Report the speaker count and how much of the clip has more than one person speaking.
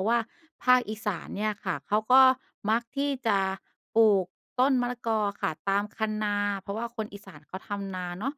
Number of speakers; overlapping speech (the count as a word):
one, no overlap